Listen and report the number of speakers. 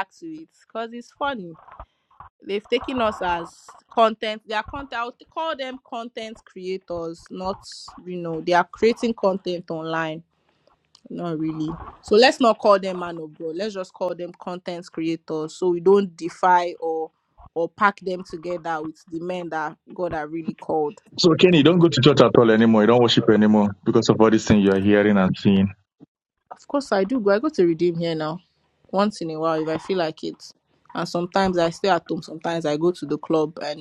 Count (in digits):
2